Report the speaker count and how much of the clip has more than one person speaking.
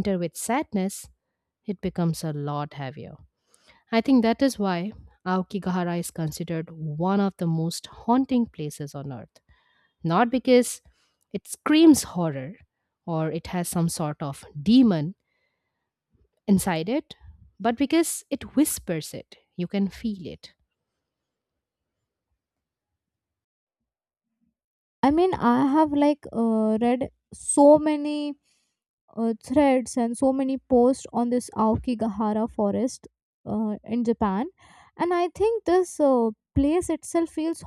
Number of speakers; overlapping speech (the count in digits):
2, no overlap